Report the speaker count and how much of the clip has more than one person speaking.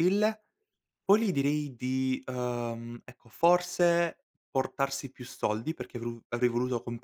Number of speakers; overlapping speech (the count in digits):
1, no overlap